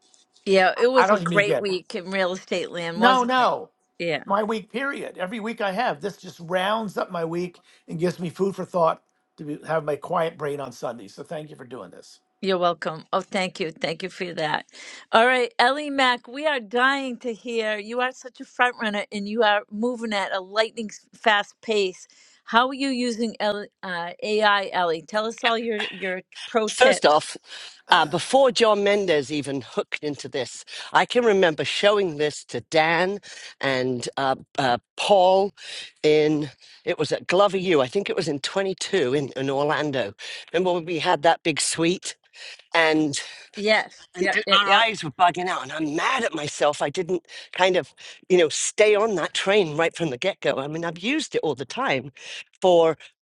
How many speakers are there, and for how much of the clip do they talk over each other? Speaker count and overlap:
three, about 4%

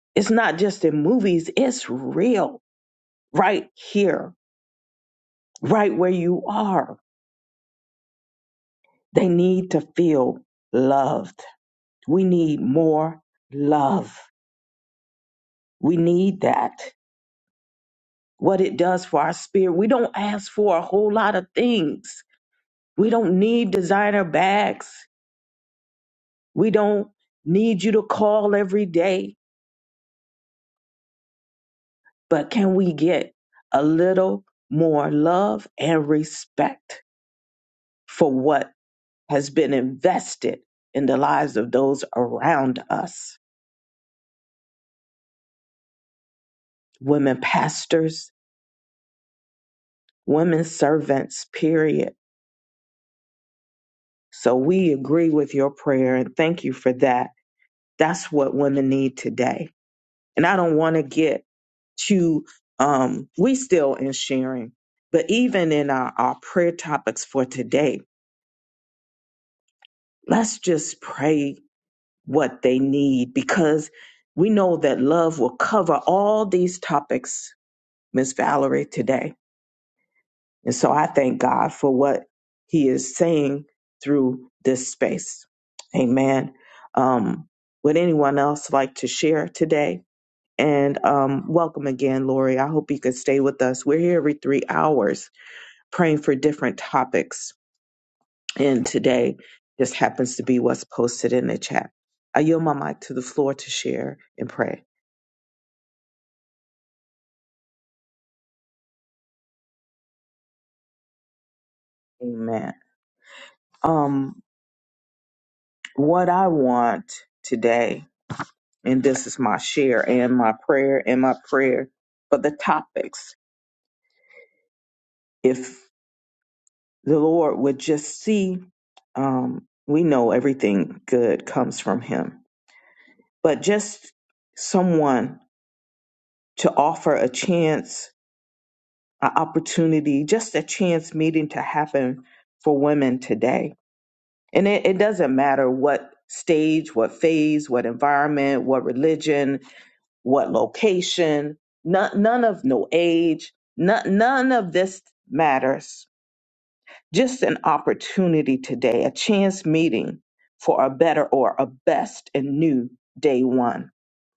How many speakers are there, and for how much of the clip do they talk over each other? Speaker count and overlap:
one, no overlap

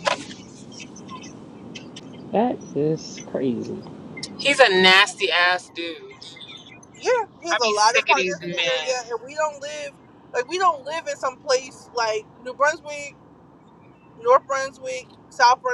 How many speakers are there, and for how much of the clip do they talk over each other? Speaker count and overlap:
three, about 10%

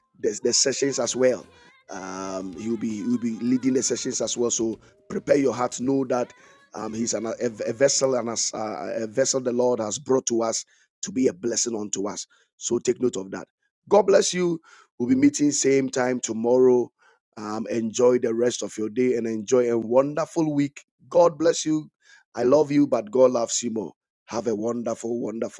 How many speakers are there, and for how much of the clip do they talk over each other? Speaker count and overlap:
one, no overlap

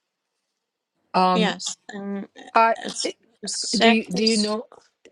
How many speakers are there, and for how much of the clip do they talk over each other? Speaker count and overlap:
two, about 28%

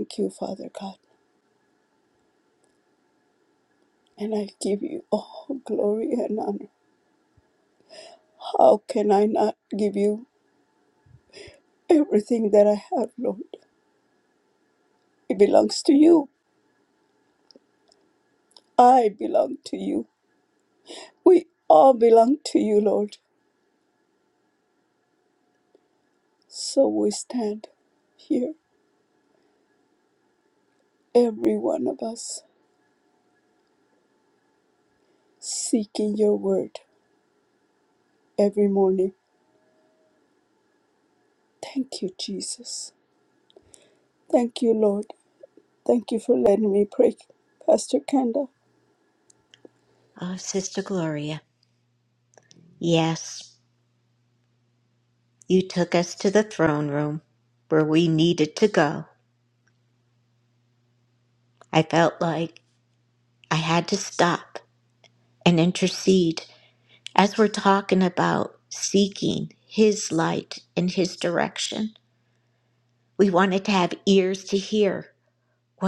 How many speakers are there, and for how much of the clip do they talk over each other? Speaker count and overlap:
two, no overlap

